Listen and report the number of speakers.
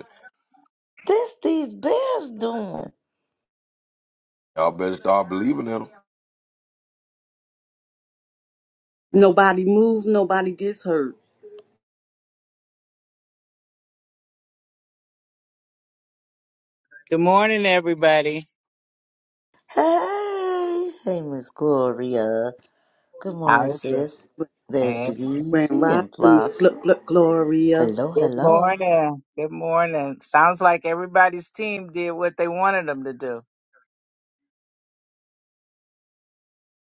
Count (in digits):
4